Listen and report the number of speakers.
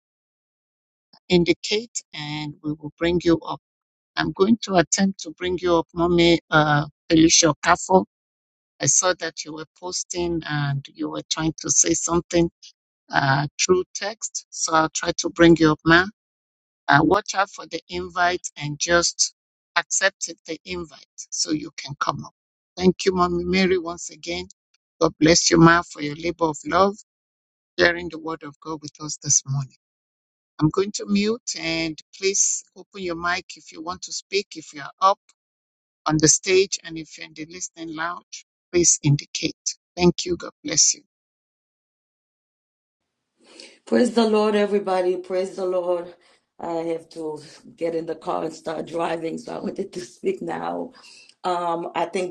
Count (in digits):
2